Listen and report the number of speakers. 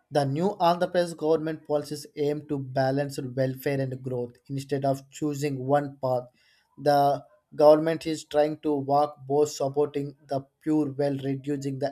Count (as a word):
one